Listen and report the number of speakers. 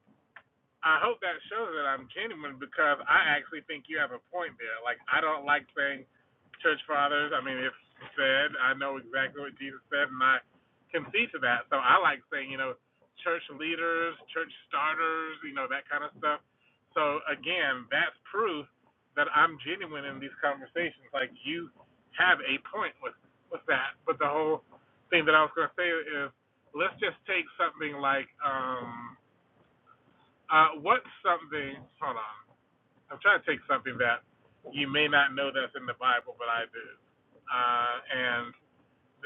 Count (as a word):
one